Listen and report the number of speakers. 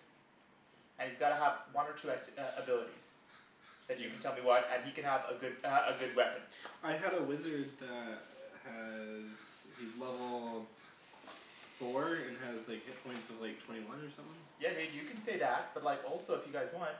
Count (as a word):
two